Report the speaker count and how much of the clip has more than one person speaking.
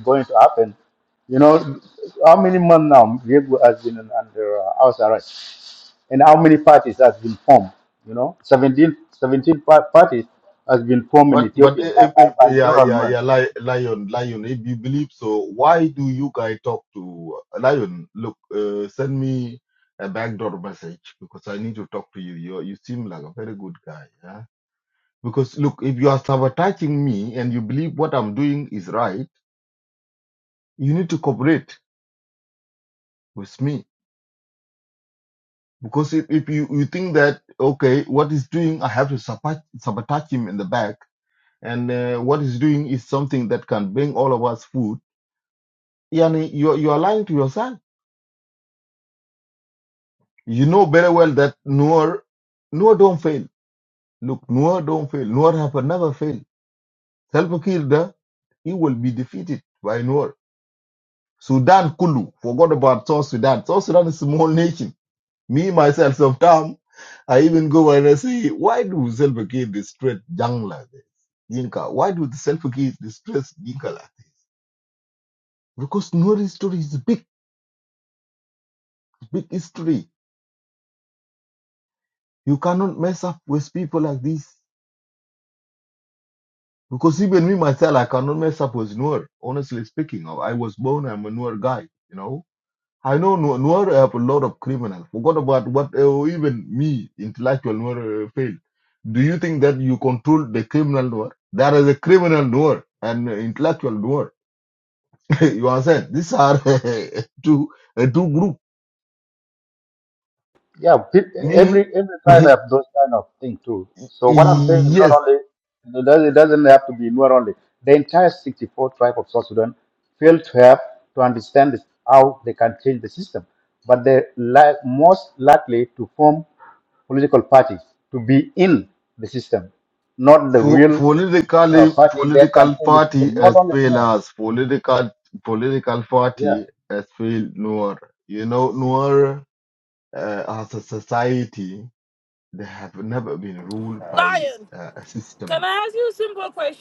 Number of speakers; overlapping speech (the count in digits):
3, about 5%